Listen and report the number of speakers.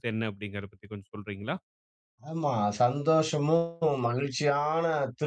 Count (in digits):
2